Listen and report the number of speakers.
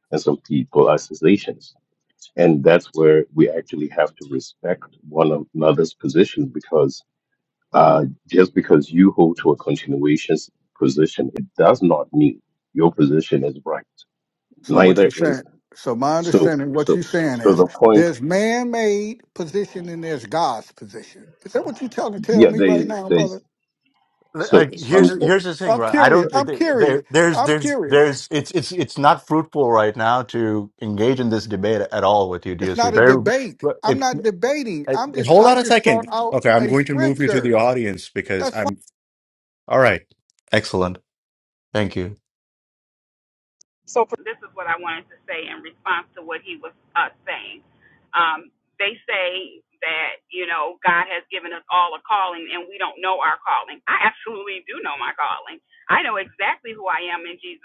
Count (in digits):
4